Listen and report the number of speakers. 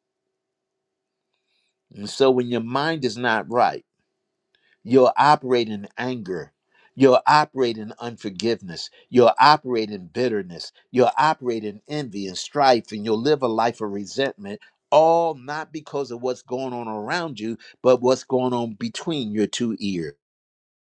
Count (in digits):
1